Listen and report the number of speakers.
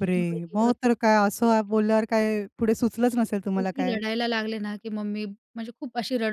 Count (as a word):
two